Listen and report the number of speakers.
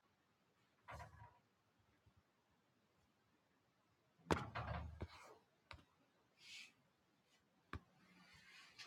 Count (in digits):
0